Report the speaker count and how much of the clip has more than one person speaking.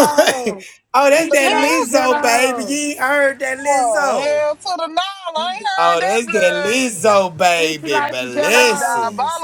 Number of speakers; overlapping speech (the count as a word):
three, about 58%